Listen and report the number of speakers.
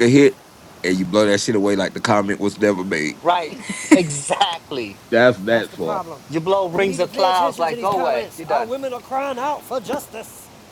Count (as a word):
three